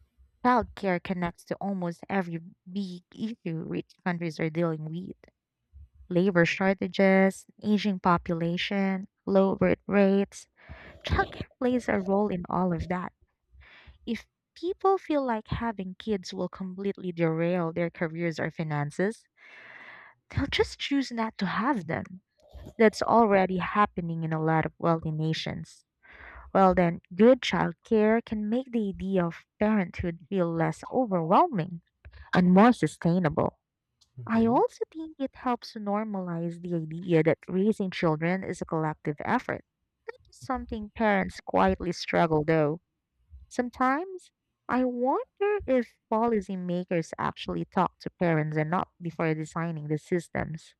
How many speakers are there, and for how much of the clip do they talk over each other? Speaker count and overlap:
one, no overlap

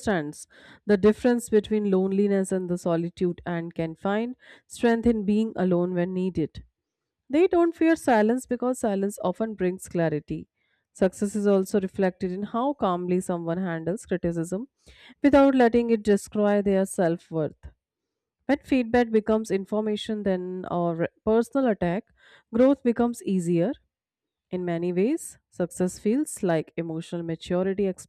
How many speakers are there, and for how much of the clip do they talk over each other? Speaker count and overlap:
one, no overlap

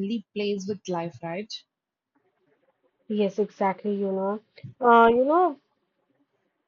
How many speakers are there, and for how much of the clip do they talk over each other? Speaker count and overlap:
two, no overlap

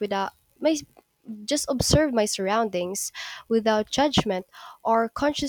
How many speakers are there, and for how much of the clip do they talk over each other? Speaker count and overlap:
one, no overlap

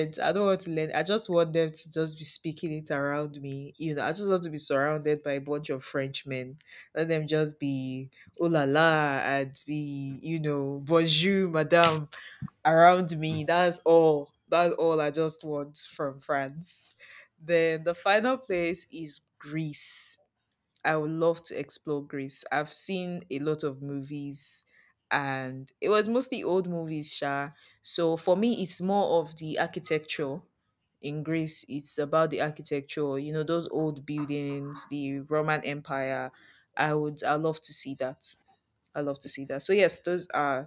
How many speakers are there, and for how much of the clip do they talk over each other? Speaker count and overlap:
one, no overlap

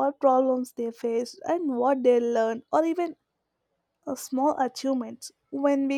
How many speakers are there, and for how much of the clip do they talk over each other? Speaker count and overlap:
one, no overlap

